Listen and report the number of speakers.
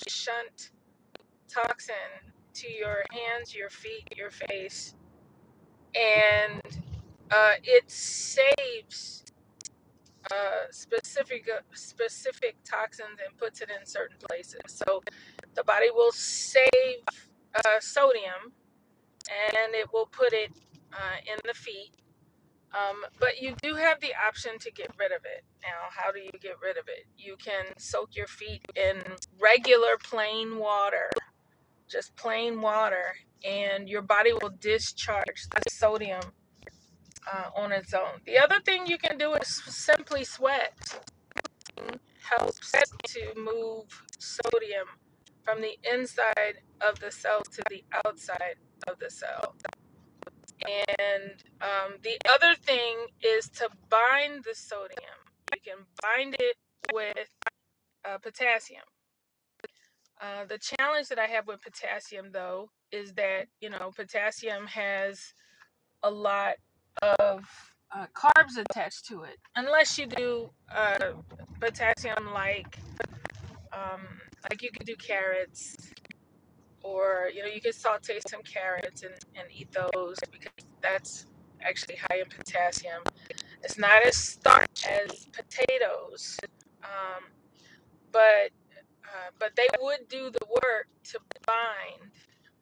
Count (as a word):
one